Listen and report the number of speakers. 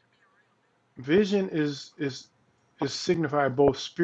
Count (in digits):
1